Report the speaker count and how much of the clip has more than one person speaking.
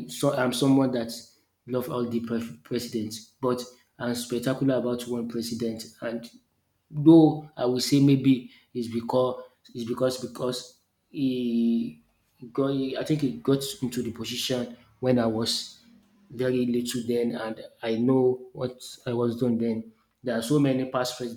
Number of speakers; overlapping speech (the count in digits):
1, no overlap